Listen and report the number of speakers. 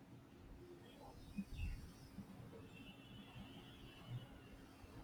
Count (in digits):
0